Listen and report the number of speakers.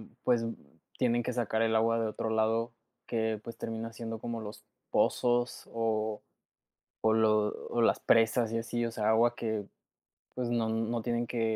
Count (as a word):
one